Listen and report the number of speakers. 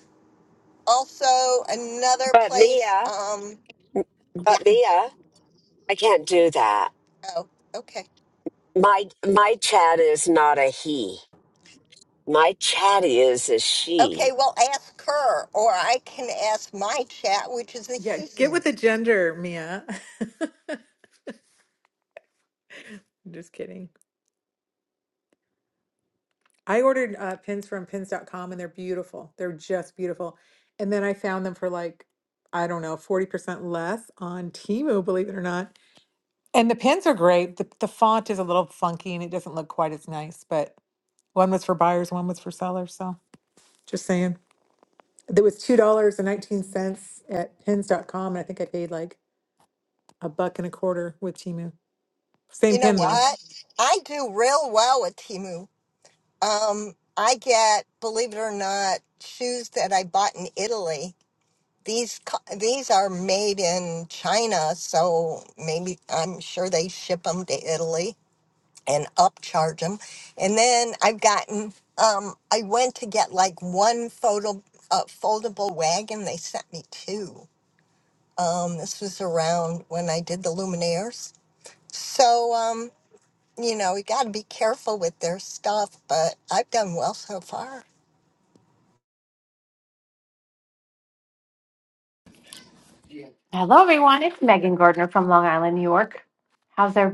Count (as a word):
four